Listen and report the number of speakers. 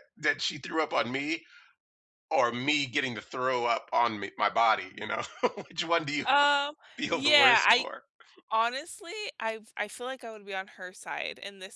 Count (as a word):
two